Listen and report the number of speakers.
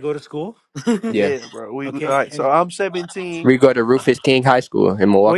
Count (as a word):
three